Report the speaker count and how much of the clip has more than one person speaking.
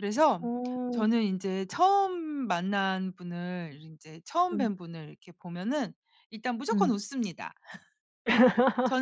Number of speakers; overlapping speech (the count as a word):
two, about 5%